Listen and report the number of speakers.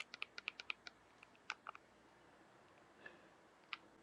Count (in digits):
0